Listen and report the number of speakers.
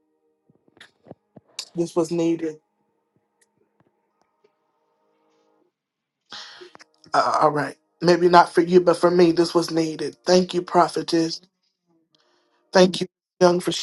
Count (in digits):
1